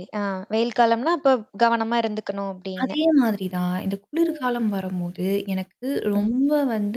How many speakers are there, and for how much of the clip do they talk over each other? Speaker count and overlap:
two, about 8%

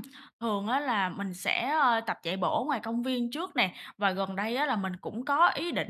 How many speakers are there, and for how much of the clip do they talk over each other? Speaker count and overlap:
one, no overlap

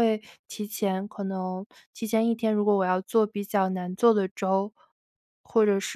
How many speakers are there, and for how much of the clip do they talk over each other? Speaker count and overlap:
one, no overlap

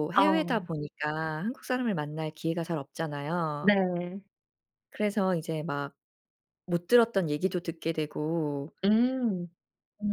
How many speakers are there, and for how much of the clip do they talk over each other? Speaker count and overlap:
two, about 5%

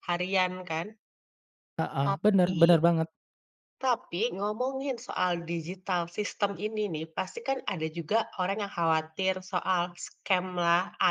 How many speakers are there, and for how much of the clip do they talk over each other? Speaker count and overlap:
two, about 7%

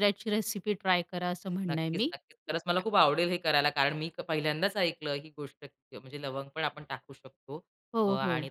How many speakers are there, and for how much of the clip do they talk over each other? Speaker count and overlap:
two, about 10%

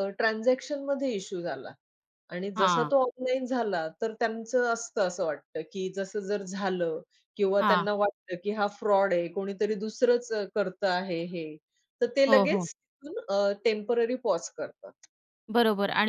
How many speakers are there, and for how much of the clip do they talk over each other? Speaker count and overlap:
two, about 6%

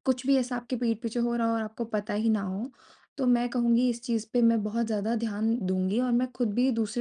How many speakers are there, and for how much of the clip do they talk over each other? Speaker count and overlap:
one, no overlap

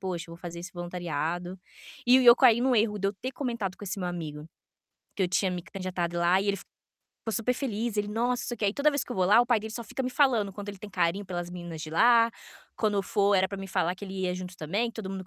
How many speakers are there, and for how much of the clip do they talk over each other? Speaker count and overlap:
one, no overlap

